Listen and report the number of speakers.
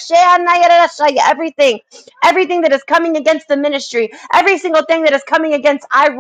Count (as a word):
one